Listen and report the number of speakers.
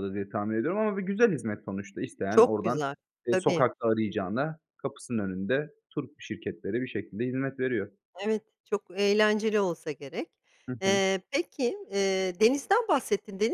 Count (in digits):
2